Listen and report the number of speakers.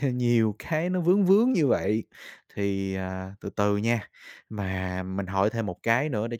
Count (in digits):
1